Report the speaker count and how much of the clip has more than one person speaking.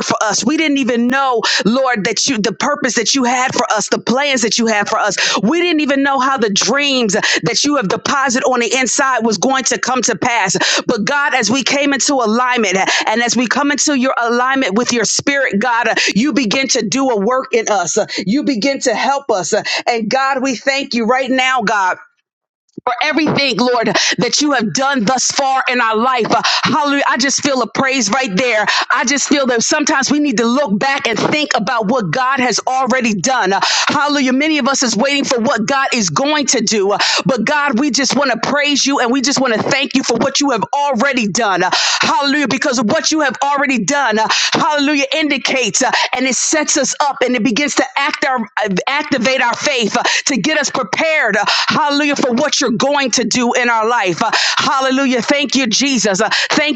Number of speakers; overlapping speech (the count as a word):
one, no overlap